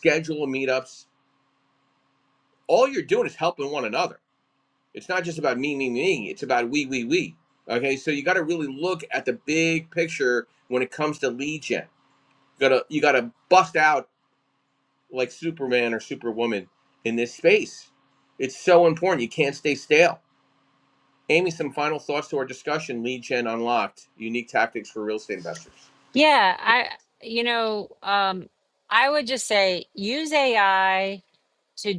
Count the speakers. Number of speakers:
2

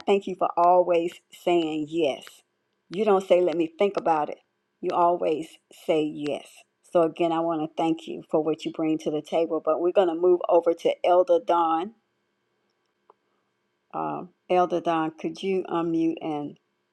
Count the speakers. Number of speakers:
1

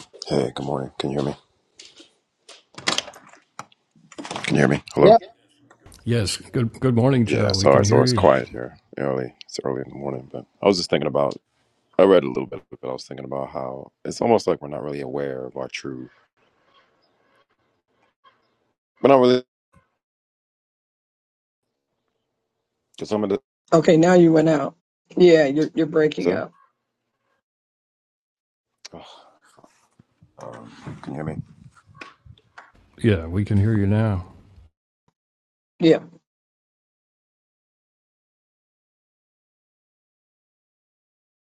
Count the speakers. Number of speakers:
3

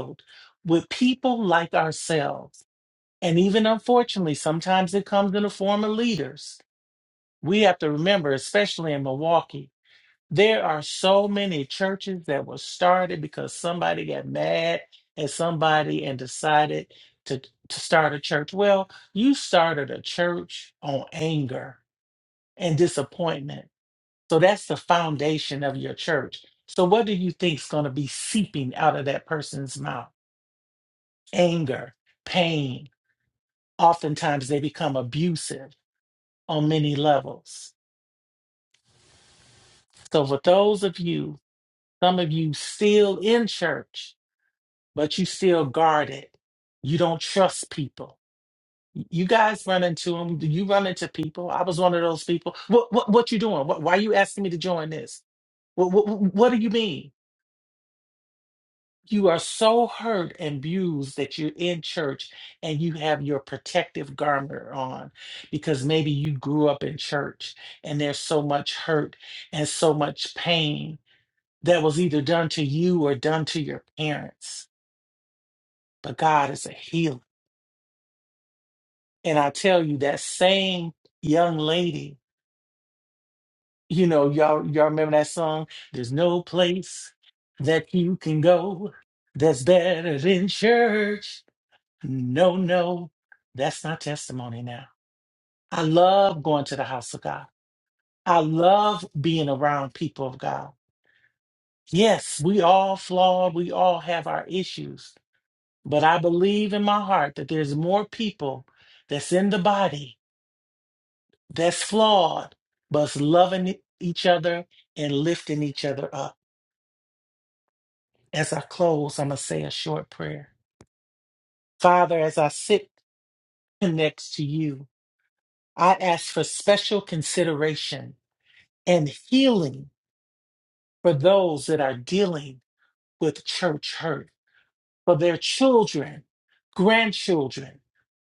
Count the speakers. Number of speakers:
1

